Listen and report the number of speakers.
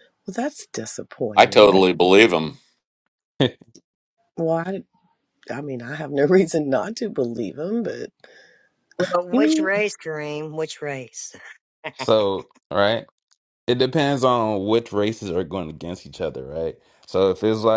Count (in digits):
4